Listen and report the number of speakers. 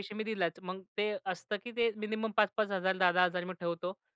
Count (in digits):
1